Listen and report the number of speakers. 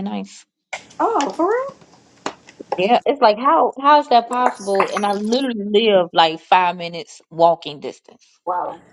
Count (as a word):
two